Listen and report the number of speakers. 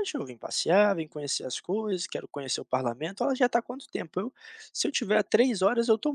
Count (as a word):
one